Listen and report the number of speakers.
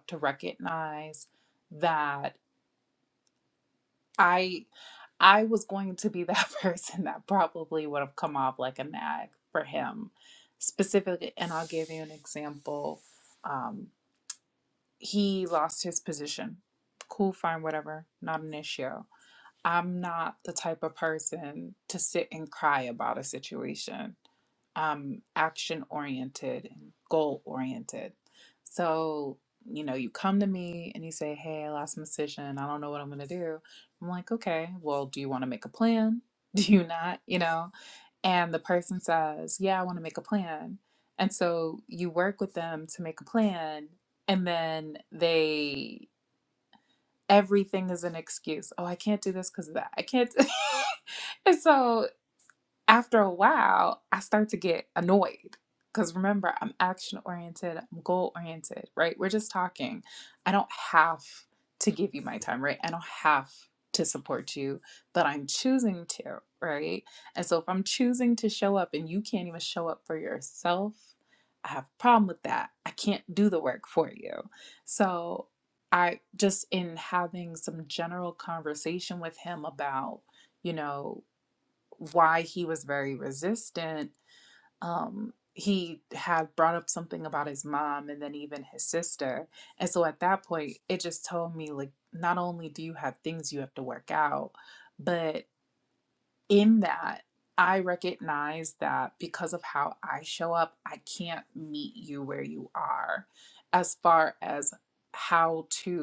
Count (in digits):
1